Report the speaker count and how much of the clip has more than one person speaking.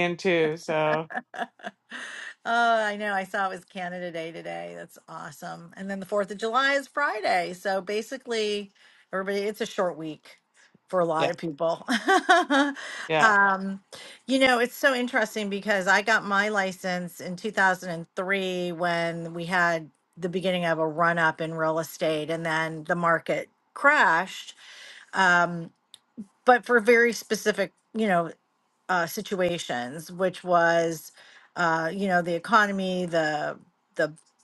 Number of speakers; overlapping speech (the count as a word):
two, under 1%